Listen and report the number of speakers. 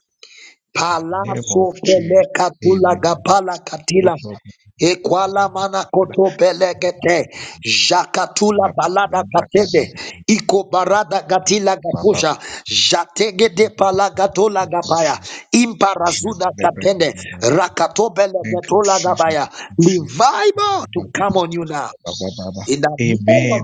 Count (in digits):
2